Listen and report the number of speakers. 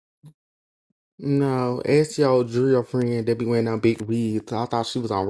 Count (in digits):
1